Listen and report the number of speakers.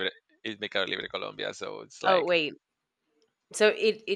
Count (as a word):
two